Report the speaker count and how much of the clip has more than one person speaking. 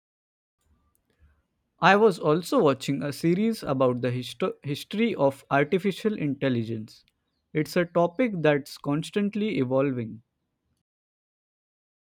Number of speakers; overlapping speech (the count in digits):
1, no overlap